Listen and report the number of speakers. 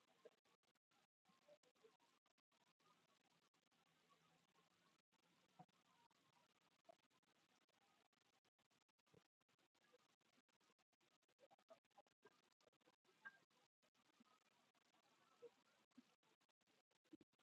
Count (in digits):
0